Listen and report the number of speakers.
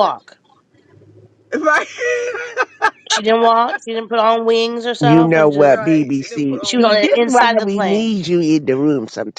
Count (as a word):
three